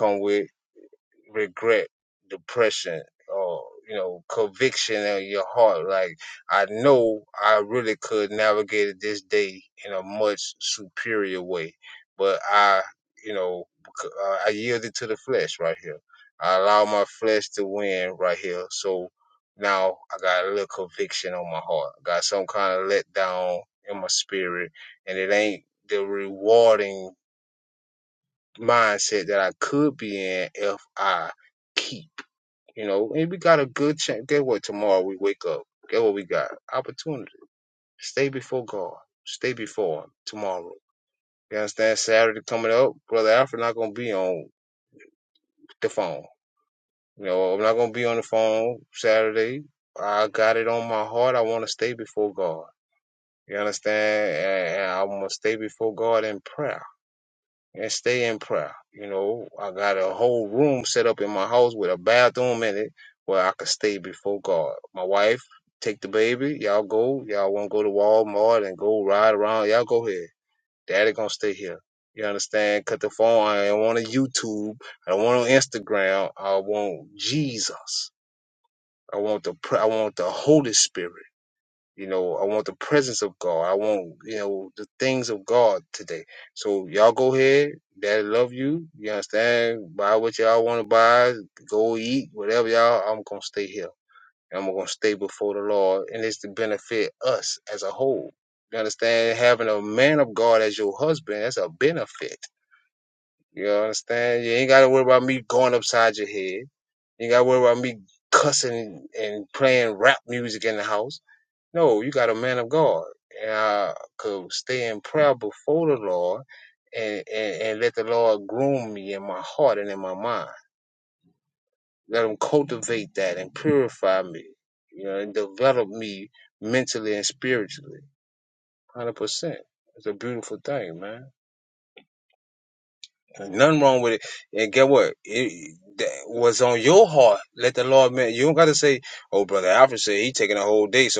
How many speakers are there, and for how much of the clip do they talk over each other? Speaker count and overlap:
one, no overlap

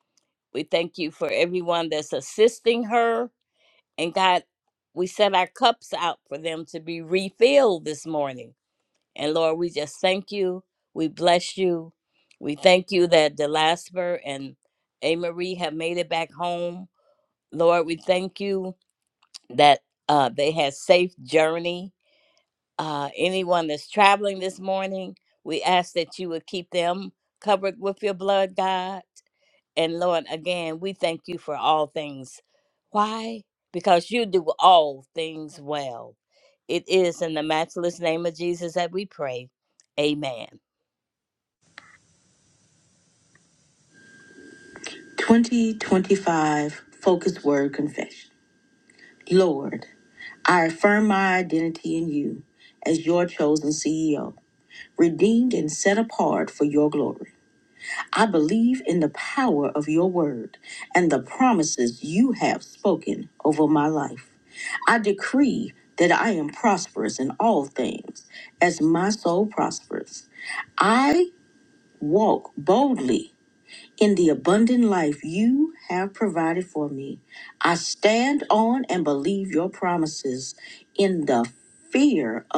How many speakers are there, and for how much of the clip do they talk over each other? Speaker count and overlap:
two, no overlap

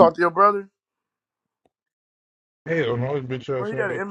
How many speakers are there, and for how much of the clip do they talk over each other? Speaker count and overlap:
two, about 13%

